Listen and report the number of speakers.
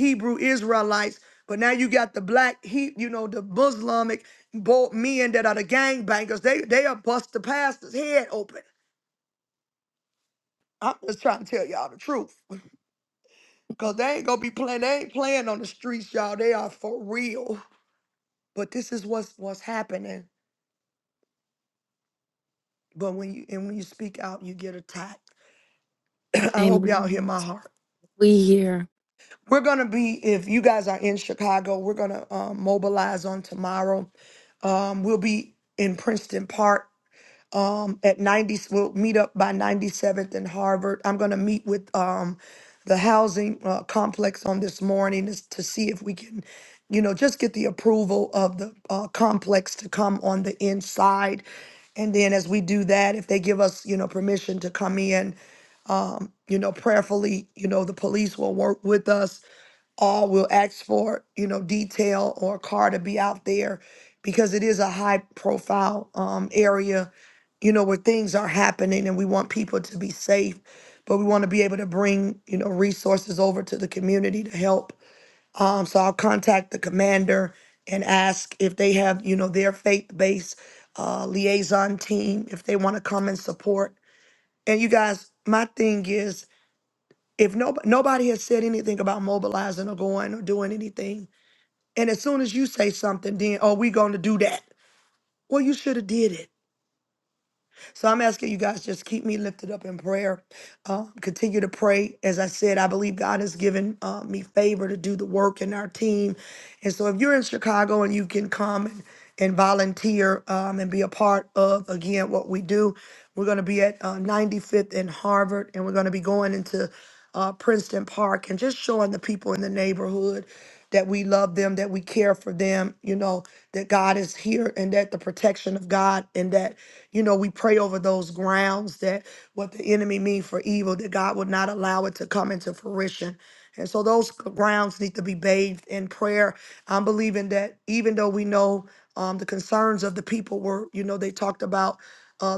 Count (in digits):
2